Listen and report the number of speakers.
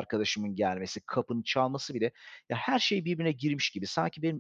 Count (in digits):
1